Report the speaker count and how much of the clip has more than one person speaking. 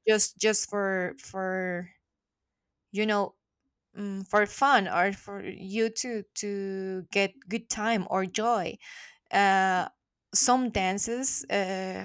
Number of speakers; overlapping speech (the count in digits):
1, no overlap